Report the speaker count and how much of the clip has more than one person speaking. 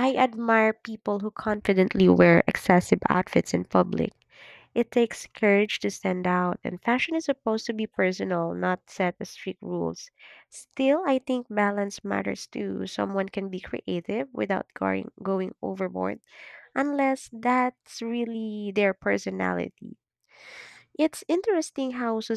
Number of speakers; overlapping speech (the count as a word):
one, no overlap